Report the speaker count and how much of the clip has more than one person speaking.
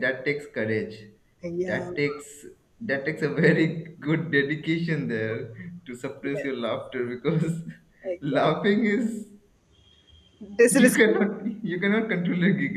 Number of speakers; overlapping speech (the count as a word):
two, about 10%